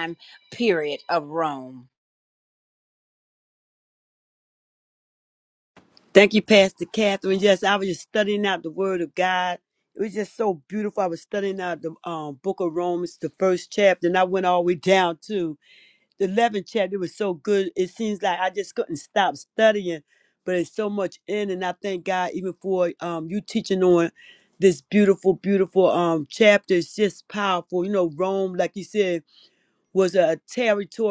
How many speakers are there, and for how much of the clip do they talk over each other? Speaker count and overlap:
two, no overlap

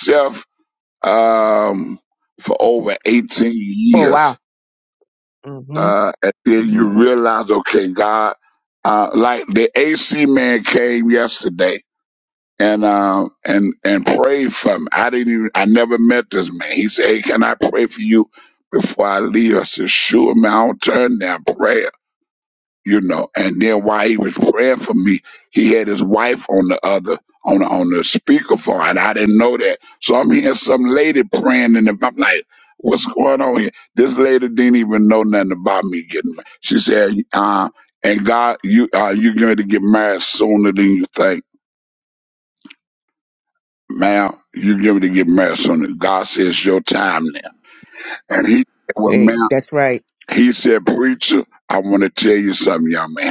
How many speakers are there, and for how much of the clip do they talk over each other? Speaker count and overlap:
two, about 2%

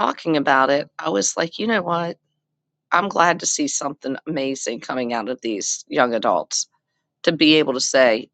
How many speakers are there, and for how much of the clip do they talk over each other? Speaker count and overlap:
one, no overlap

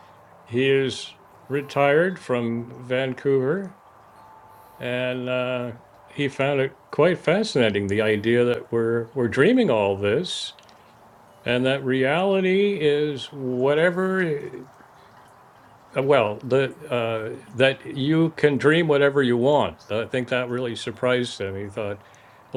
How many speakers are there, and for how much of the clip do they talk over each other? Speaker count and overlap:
one, no overlap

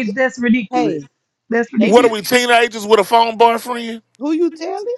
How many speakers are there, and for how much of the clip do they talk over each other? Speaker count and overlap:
three, about 12%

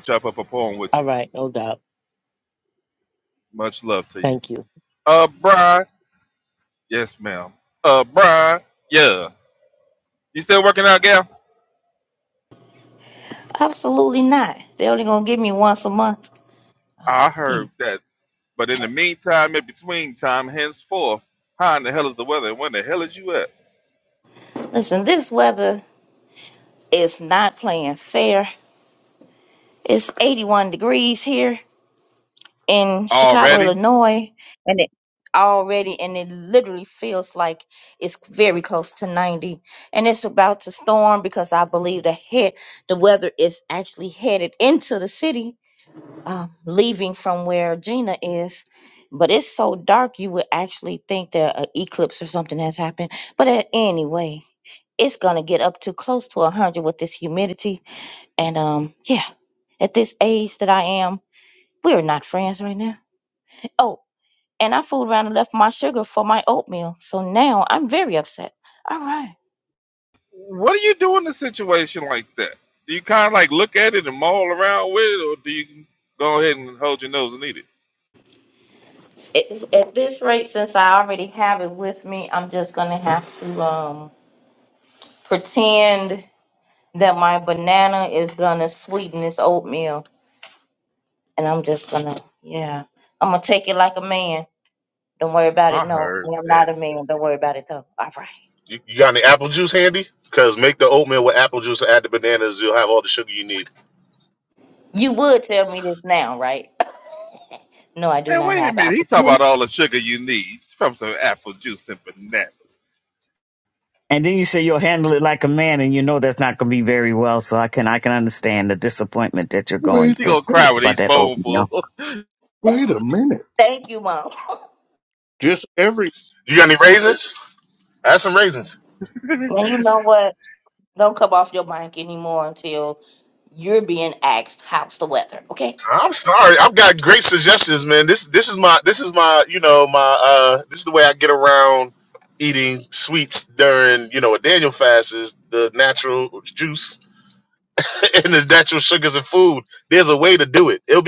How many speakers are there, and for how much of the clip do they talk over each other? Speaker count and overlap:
six, about 3%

